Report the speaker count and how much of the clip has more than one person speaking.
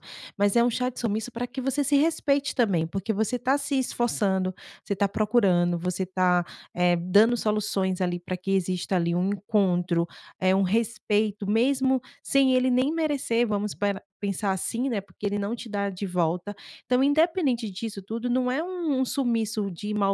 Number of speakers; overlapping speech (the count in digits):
1, no overlap